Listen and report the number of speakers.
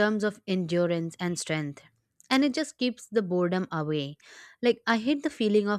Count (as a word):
one